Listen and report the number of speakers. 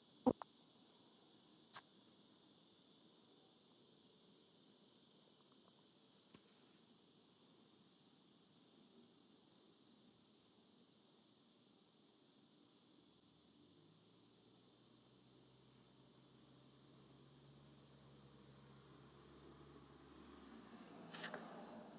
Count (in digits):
0